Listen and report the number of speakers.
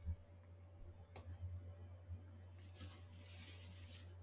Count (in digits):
0